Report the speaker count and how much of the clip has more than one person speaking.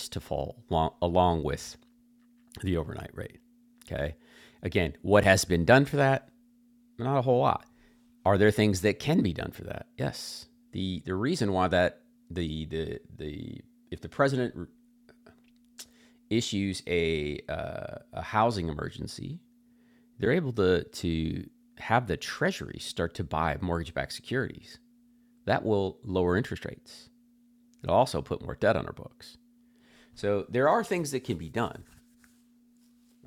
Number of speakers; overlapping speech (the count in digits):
1, no overlap